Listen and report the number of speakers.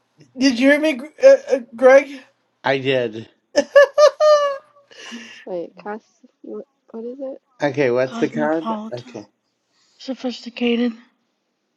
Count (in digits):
4